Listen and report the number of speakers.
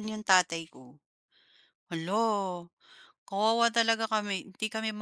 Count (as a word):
one